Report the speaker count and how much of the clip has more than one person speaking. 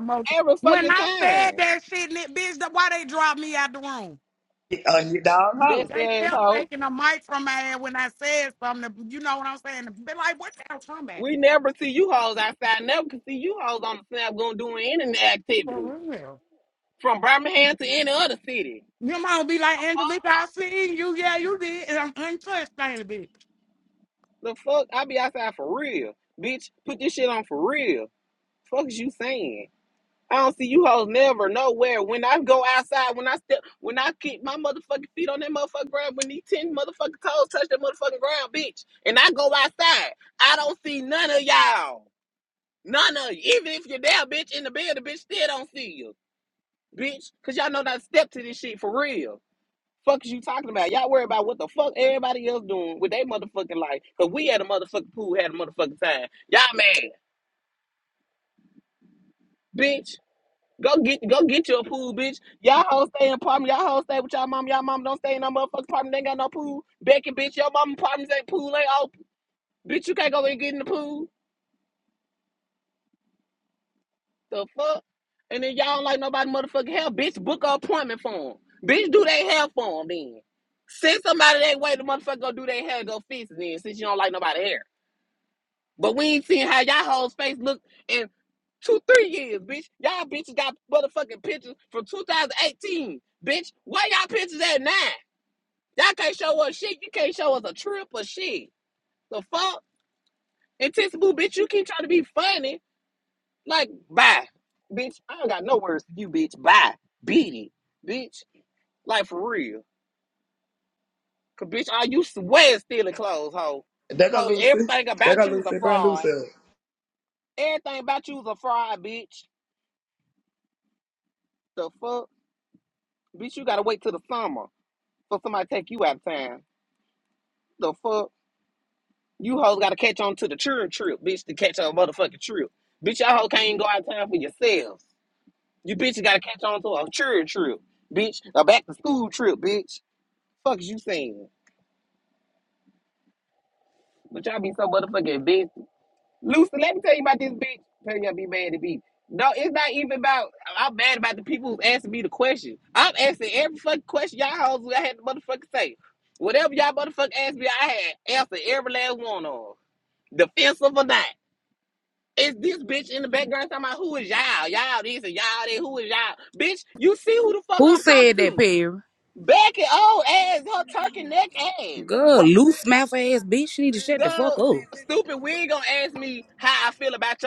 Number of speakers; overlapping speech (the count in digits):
4, about 4%